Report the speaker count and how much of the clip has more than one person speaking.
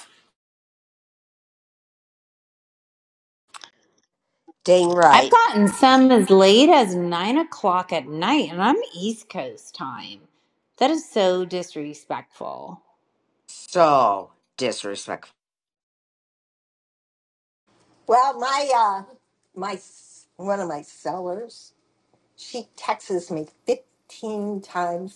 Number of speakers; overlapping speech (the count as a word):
three, about 1%